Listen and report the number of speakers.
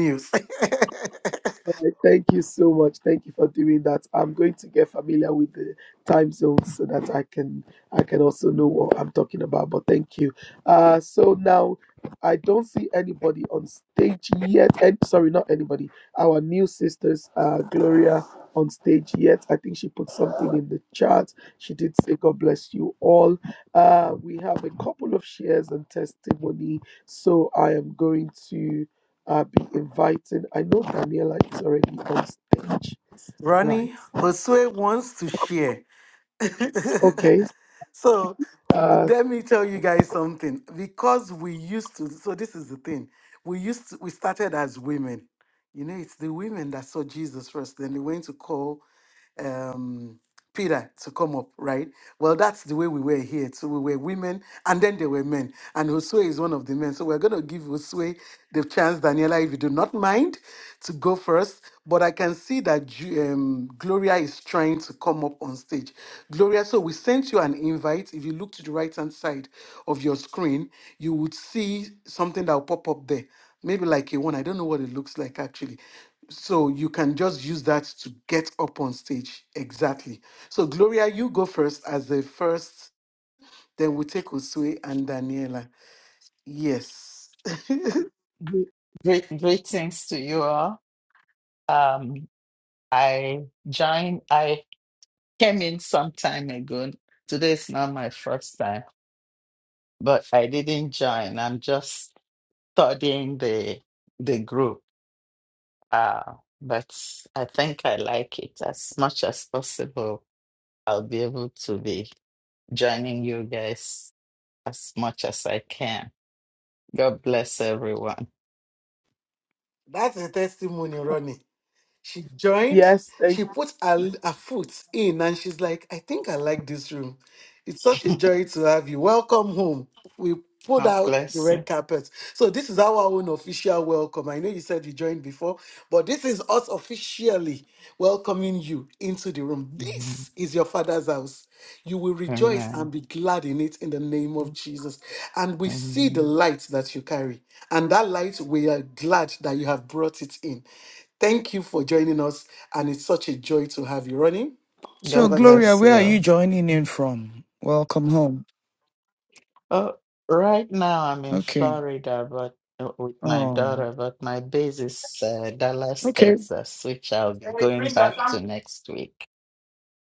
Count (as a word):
four